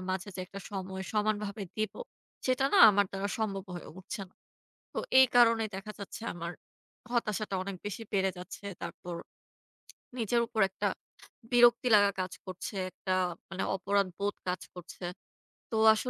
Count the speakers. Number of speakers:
1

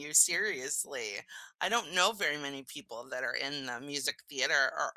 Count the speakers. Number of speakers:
1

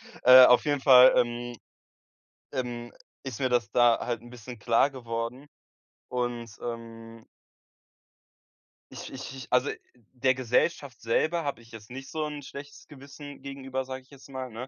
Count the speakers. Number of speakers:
1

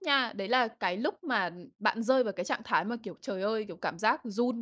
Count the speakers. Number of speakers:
1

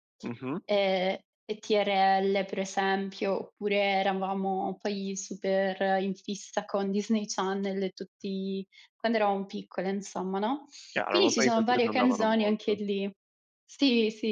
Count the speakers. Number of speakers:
2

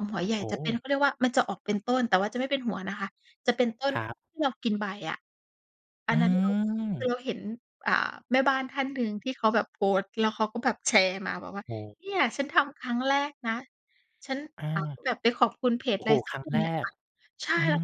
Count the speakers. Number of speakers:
2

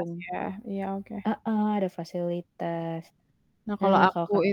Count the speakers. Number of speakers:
2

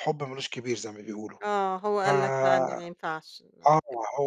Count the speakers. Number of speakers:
2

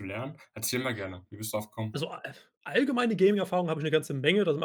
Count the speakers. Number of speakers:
2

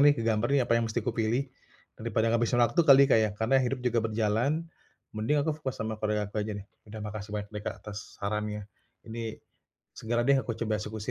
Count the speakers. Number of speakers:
1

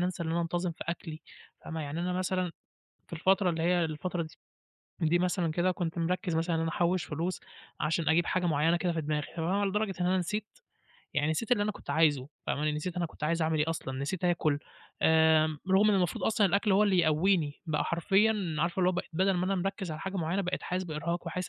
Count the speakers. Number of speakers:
1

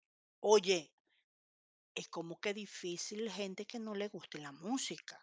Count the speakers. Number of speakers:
1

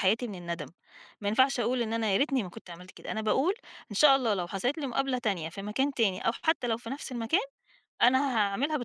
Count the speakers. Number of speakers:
1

